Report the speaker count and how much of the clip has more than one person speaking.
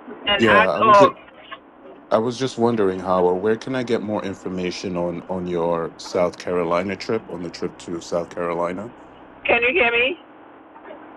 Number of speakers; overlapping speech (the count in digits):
2, about 7%